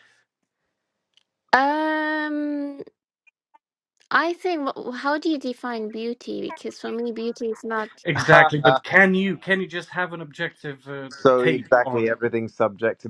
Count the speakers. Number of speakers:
three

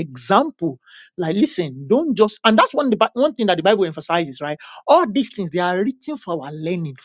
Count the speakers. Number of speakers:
one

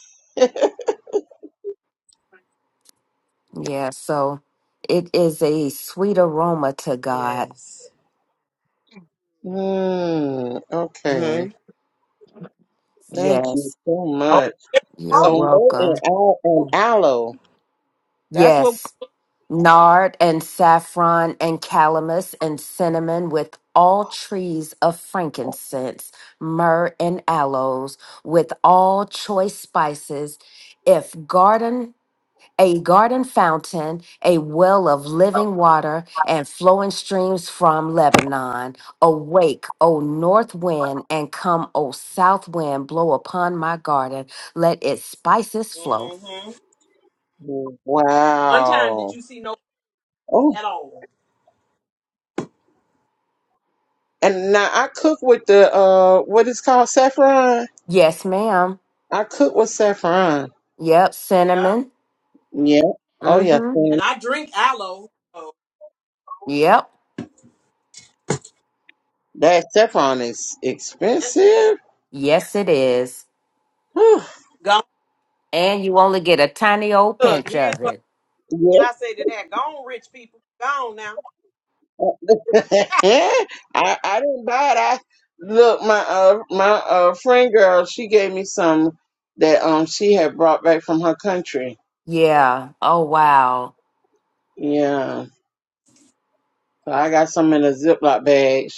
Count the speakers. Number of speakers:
three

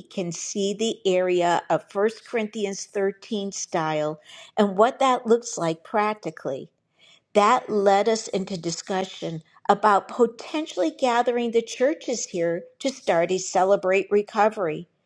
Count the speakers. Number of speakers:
one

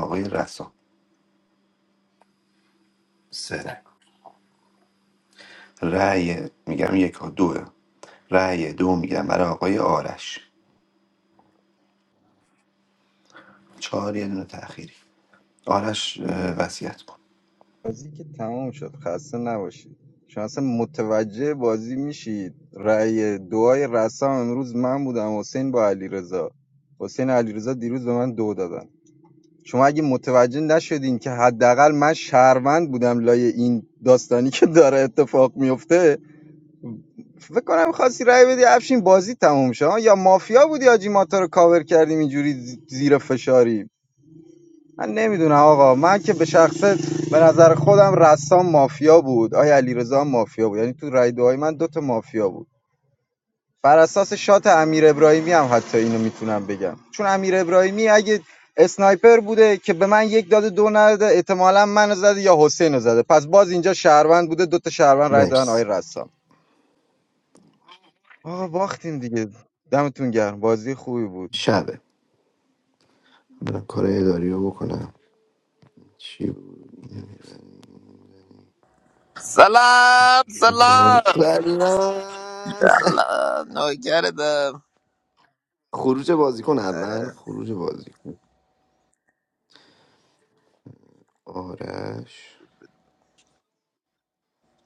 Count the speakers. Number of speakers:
three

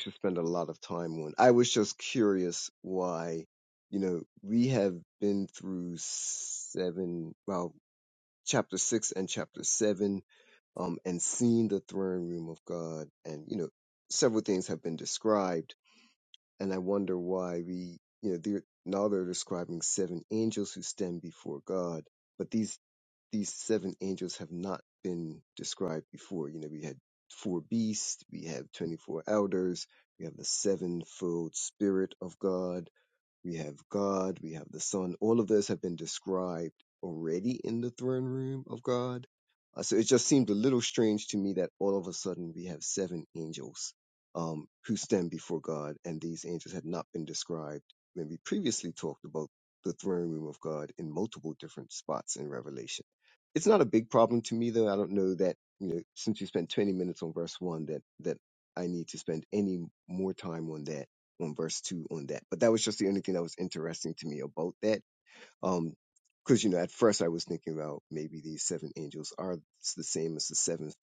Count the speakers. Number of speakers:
one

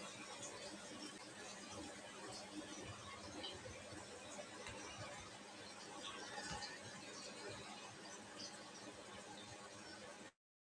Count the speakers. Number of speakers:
zero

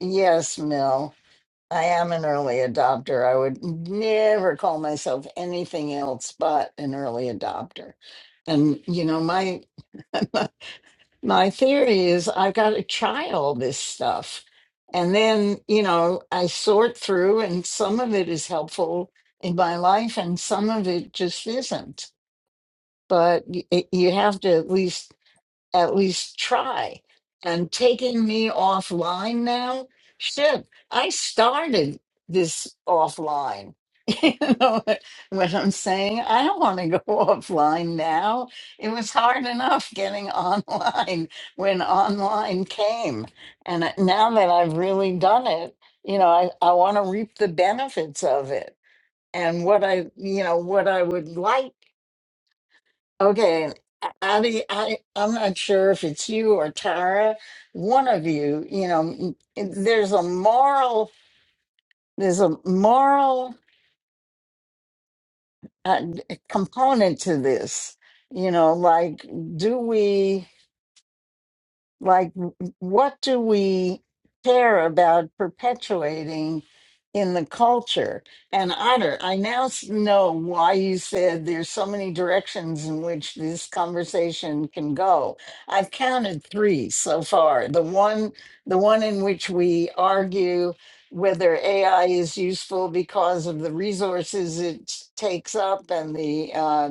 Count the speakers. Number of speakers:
one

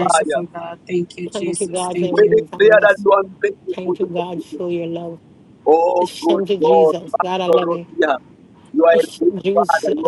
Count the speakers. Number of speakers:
three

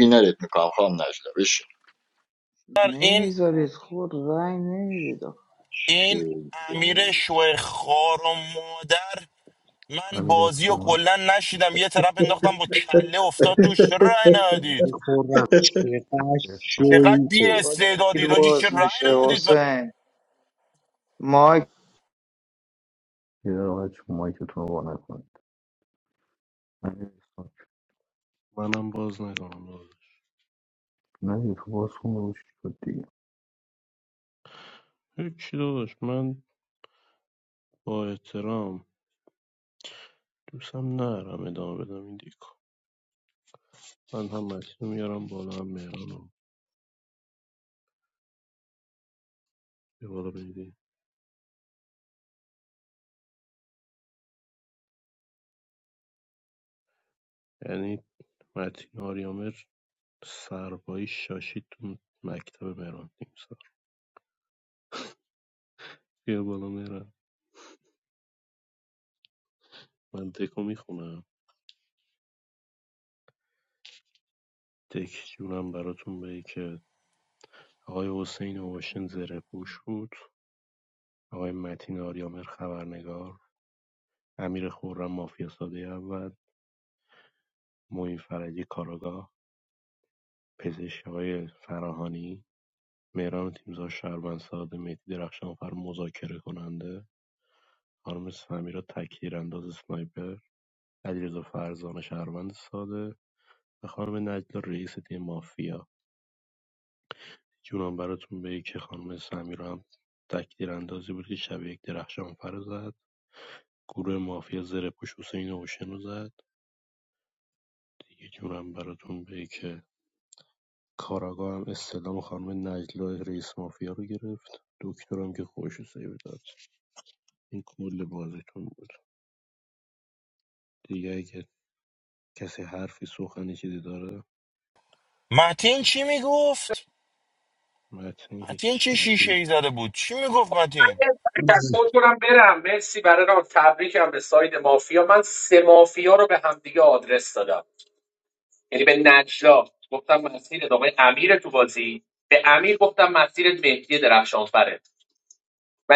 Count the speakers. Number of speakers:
seven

